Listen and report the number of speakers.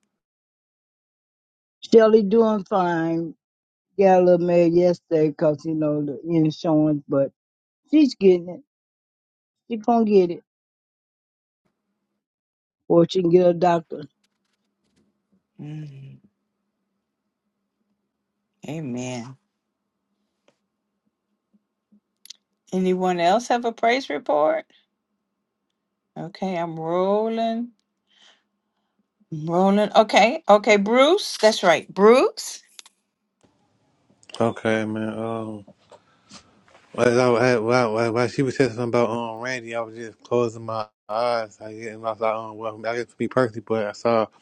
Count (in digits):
3